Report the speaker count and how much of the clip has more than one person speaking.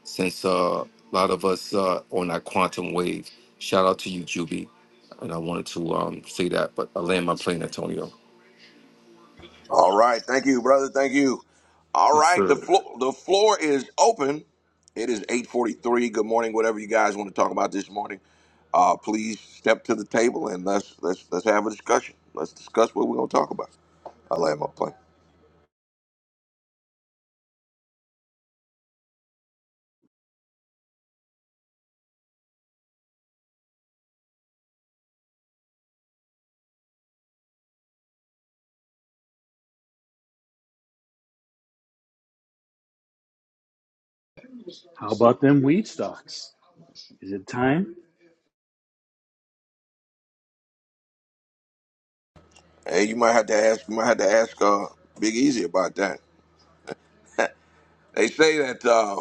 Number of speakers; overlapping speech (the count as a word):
three, about 1%